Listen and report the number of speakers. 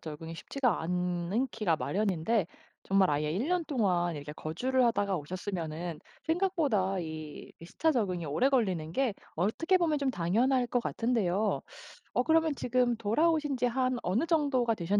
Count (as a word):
one